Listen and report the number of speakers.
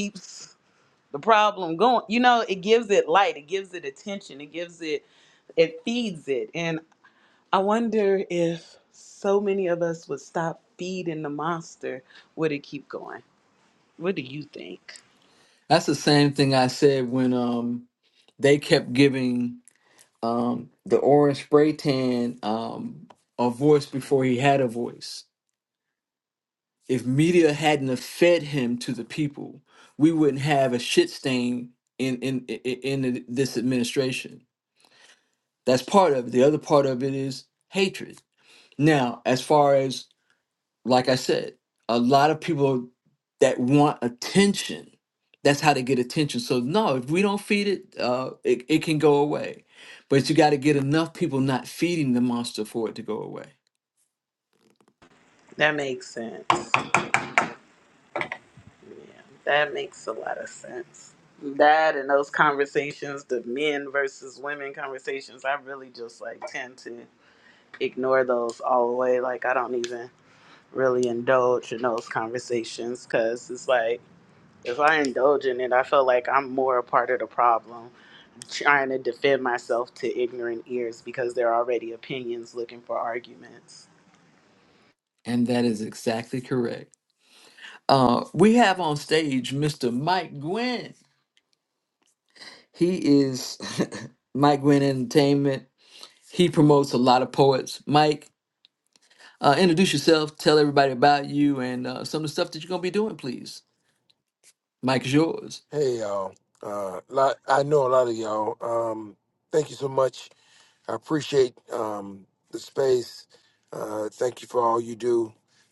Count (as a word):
three